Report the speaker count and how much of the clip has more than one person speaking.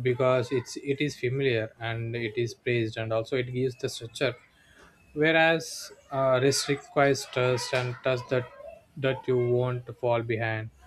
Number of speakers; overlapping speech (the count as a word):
one, no overlap